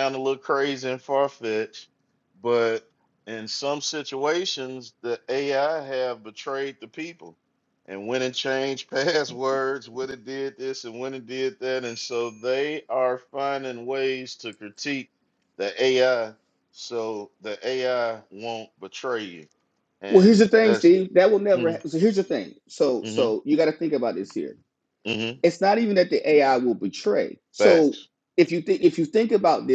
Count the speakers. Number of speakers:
2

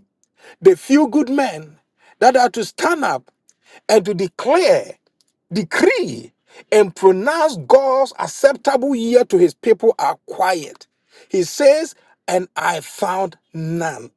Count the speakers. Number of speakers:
1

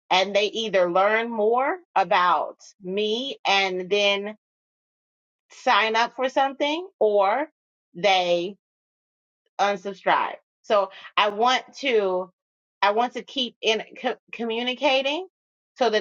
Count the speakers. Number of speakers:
1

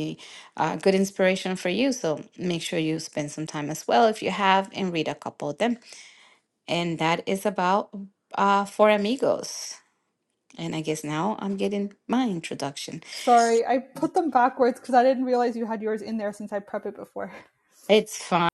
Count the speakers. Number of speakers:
2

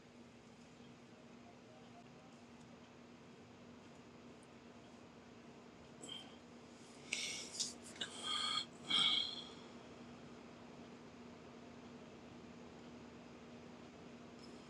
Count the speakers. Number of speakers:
0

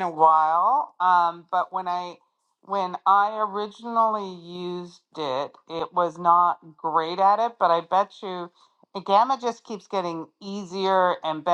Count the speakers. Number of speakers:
1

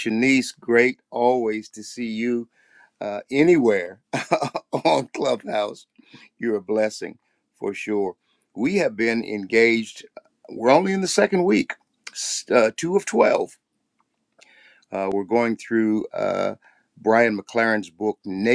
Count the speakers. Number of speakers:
1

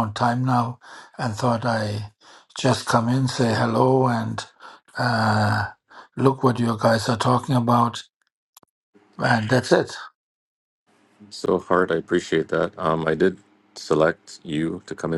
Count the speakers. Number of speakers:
2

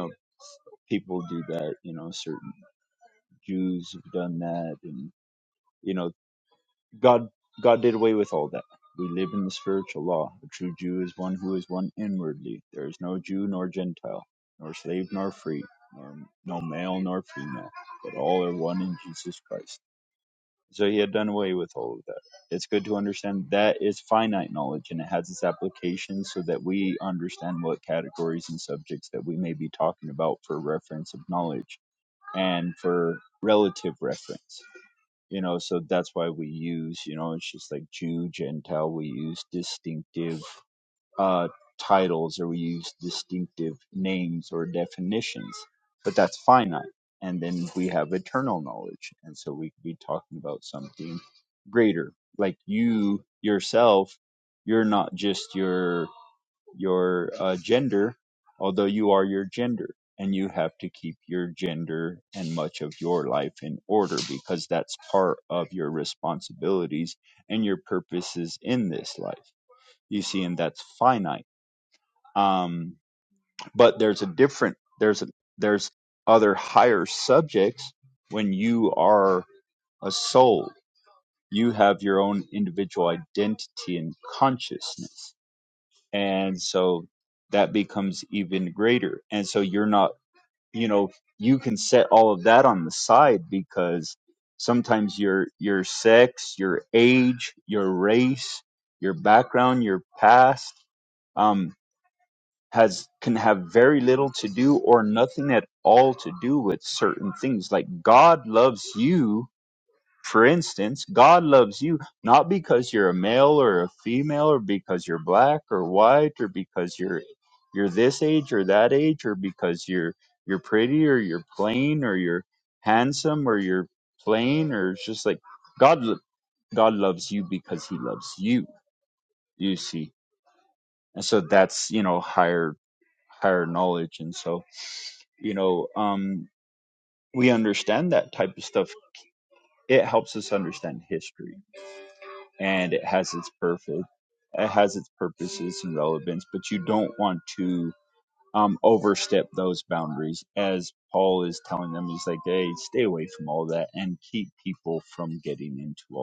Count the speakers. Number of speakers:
1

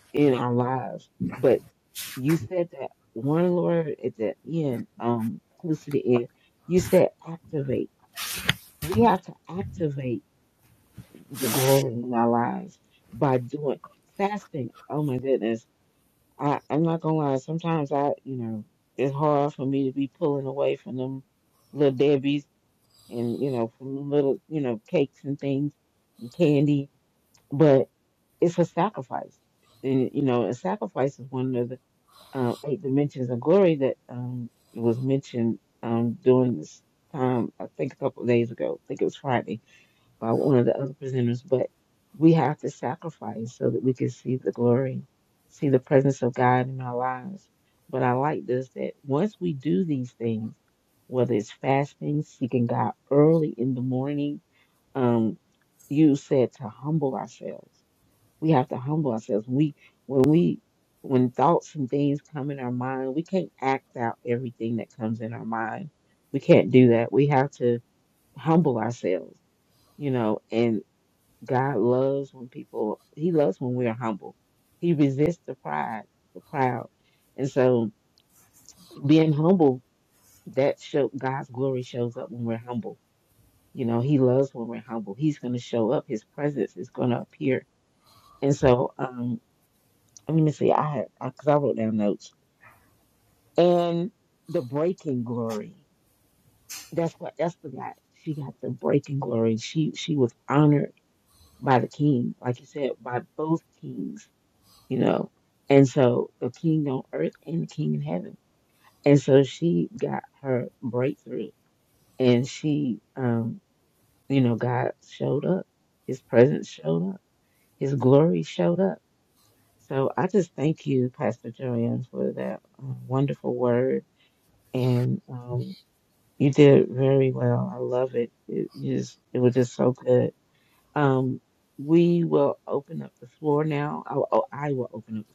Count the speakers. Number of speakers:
1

